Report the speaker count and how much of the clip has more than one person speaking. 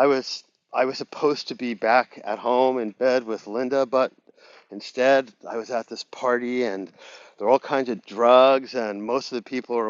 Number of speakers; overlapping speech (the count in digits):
1, no overlap